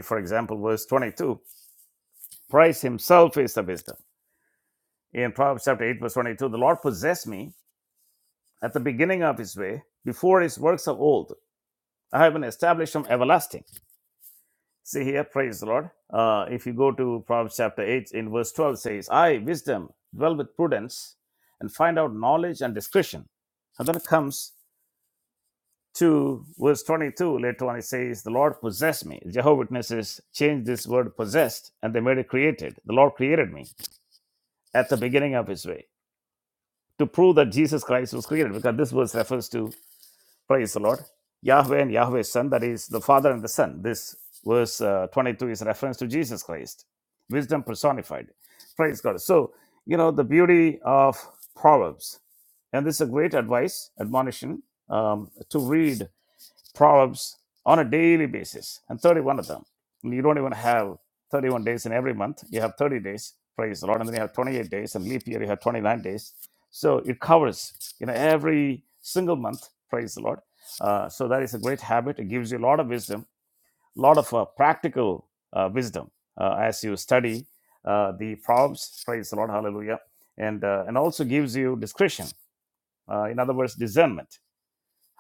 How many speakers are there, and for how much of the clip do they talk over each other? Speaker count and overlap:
one, no overlap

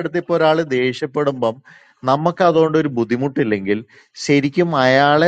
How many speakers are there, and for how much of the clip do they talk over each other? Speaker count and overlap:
one, no overlap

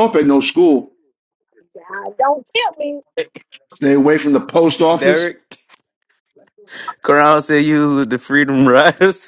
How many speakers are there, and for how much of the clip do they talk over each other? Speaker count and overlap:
three, about 3%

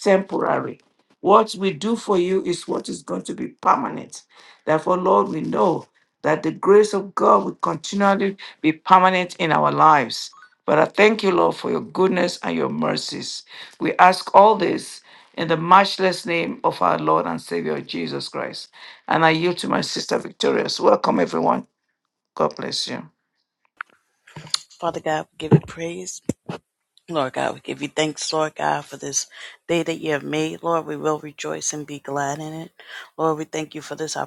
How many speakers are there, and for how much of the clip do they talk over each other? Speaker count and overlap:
two, no overlap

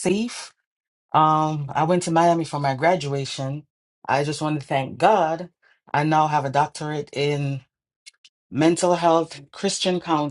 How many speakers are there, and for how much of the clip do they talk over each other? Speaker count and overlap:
one, no overlap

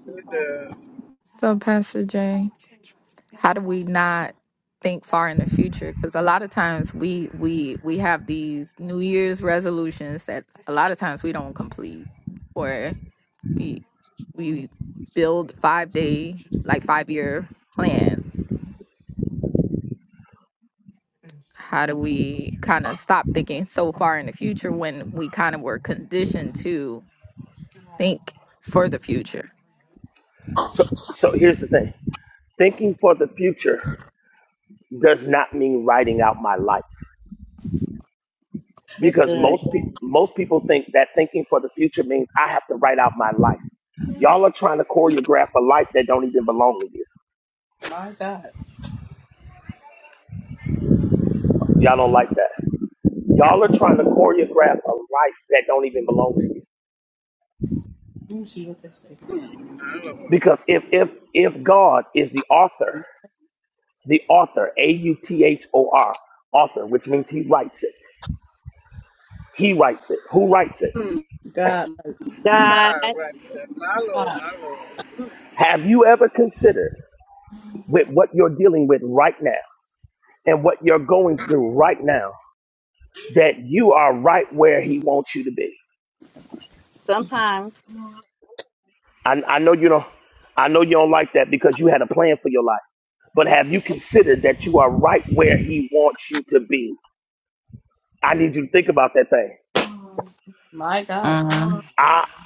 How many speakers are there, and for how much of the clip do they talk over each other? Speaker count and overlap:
five, about 1%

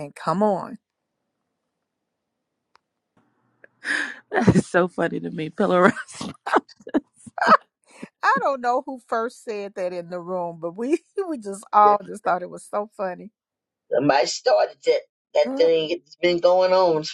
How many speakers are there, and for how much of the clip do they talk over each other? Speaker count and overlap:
three, about 2%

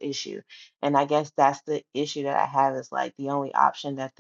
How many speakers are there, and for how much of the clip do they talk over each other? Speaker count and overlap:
one, no overlap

